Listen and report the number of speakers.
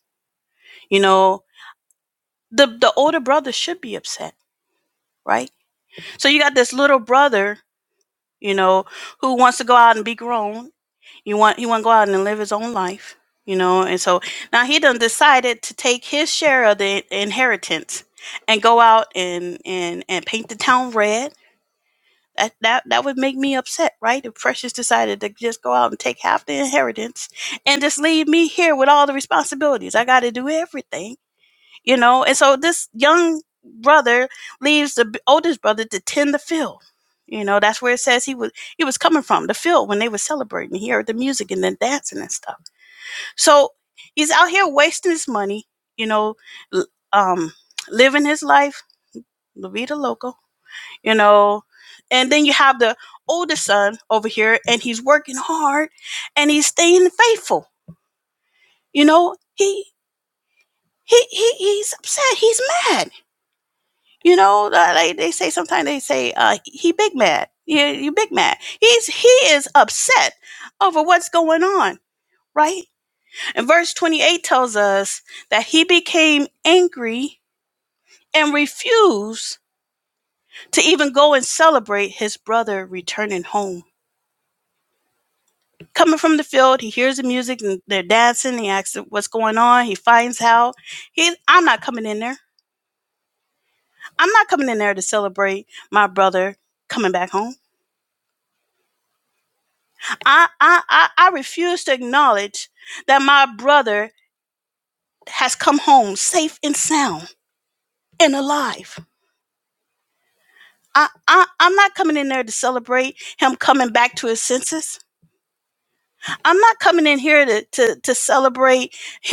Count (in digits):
1